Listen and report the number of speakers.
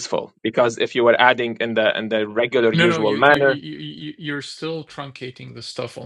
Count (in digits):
2